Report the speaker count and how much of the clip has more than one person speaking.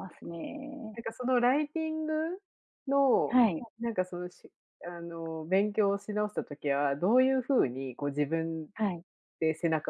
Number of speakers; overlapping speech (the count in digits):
2, about 1%